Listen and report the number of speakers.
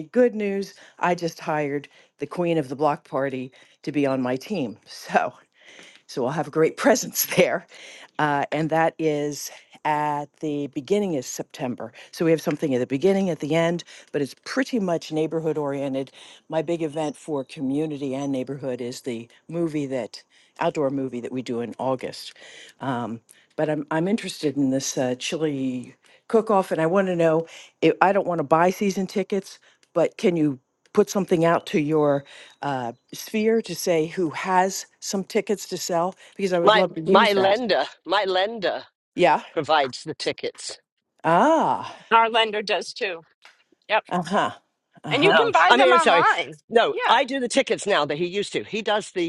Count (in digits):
3